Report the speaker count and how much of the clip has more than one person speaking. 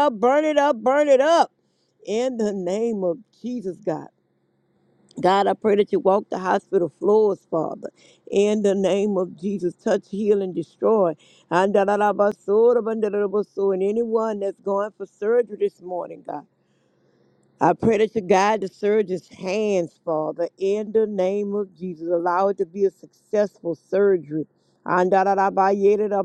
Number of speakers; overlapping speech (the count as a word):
one, no overlap